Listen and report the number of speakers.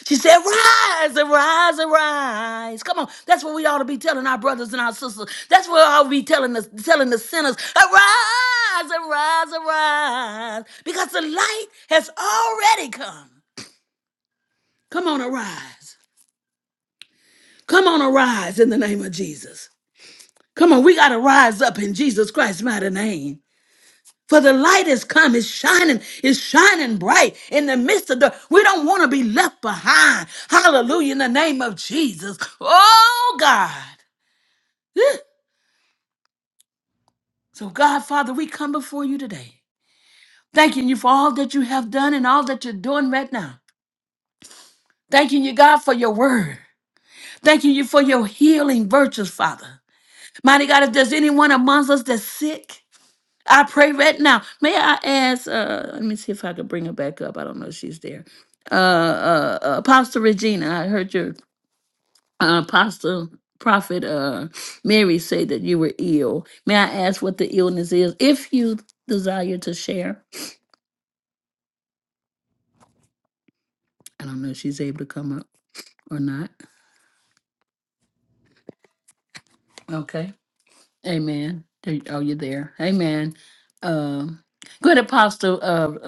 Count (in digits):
1